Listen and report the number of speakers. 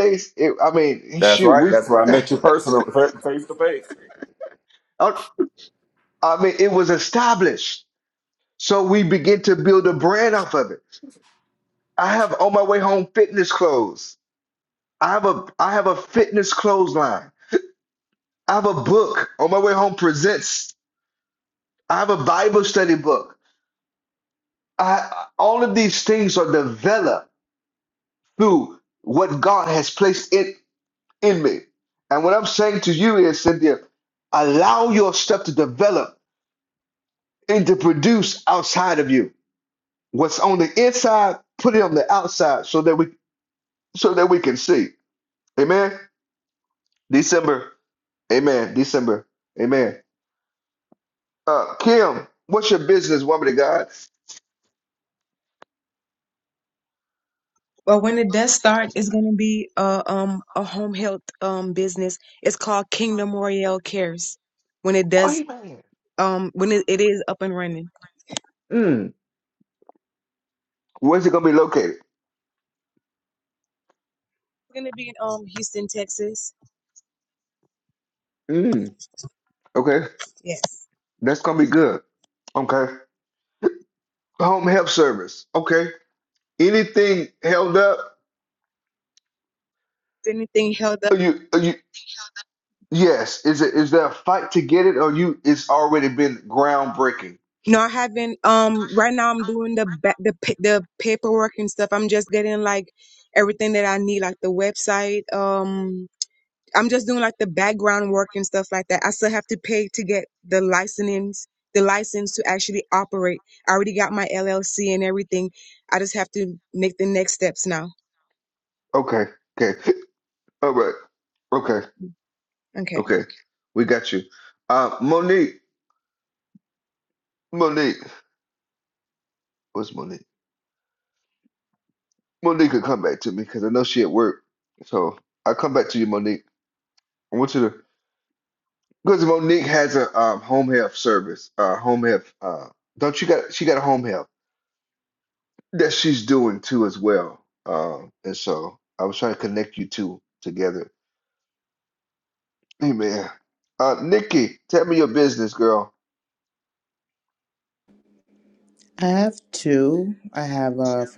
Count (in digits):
4